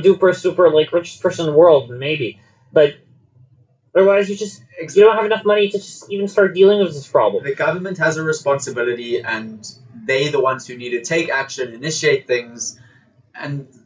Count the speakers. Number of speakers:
two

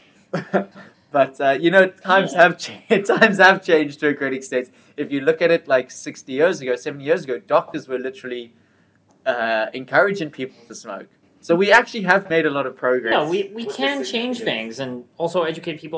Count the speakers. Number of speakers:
two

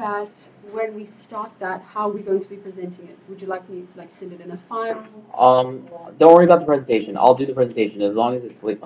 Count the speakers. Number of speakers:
two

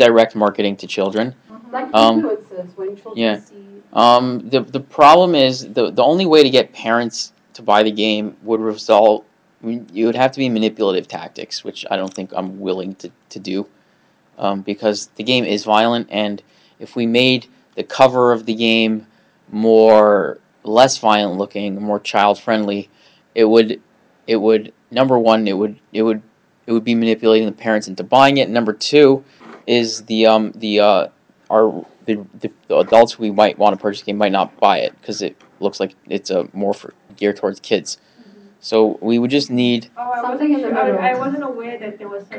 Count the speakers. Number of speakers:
three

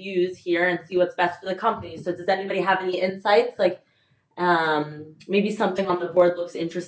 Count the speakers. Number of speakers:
one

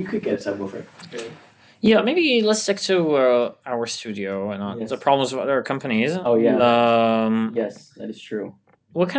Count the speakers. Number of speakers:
three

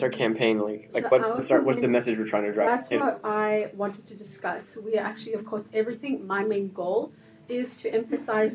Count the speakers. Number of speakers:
two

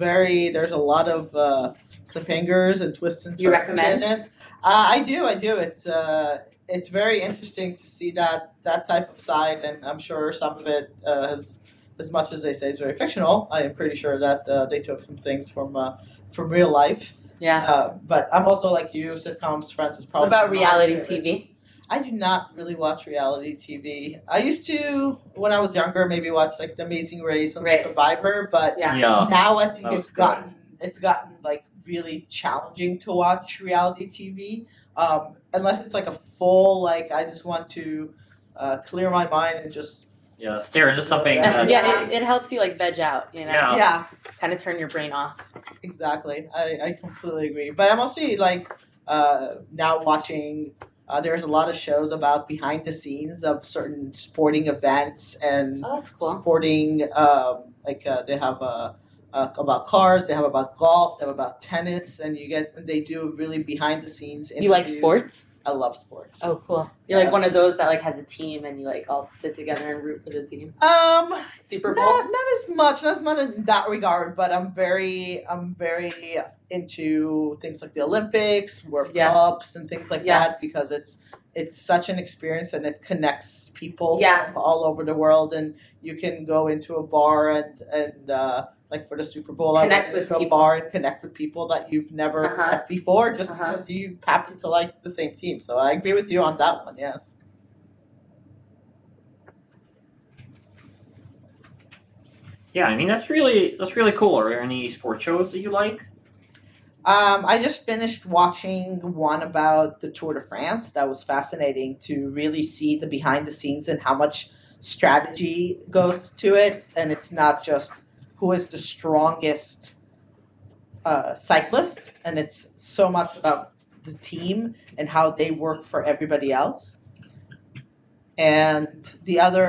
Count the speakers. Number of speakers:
three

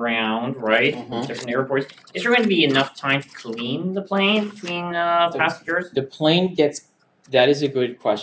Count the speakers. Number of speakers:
two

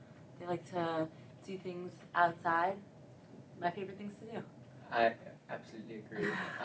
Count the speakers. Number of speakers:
two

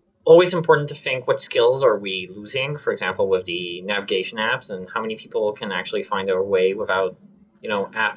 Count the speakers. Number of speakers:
one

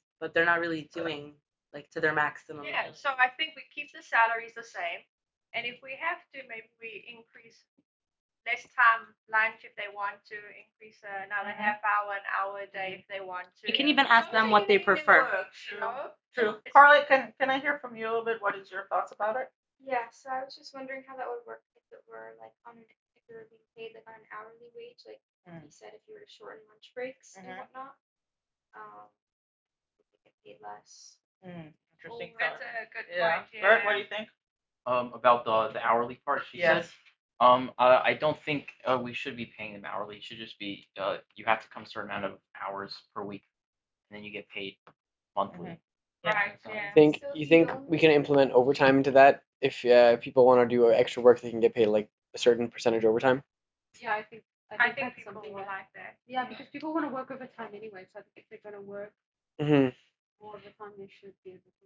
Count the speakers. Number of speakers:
seven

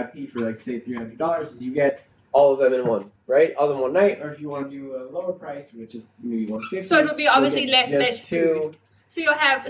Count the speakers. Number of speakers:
two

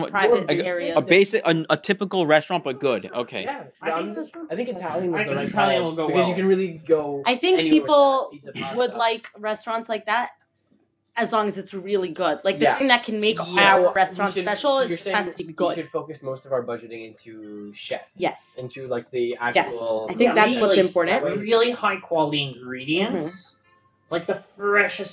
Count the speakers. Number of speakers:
four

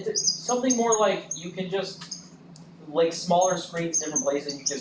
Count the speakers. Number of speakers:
one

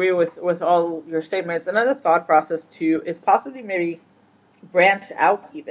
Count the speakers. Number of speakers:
one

